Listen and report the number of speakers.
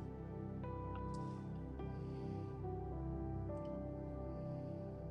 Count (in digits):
0